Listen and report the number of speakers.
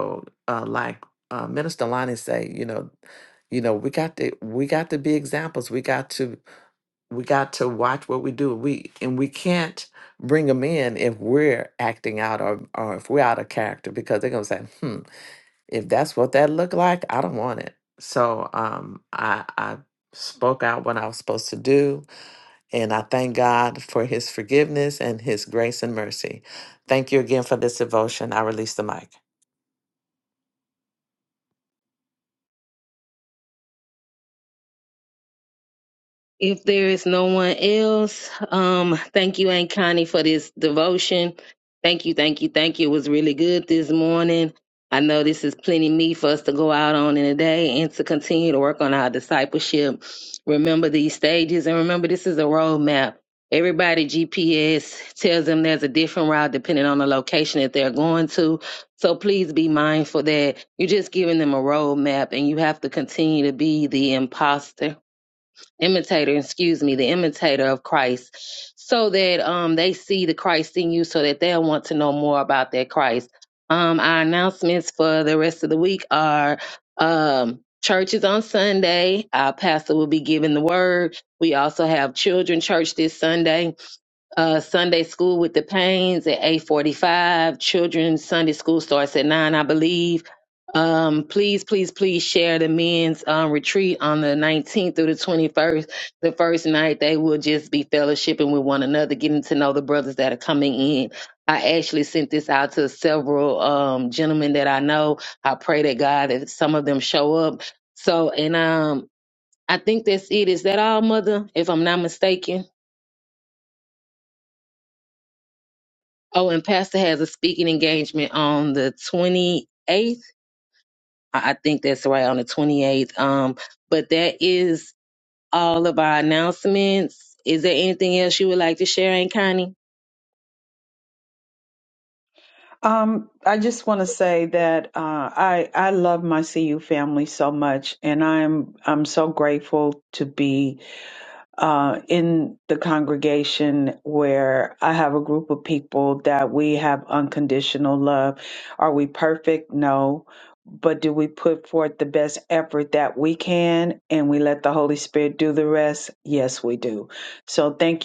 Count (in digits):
3